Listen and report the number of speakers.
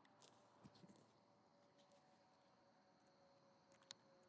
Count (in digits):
0